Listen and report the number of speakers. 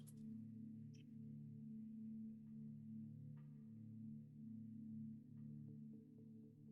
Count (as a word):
zero